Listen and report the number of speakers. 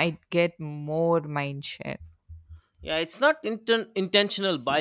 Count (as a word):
two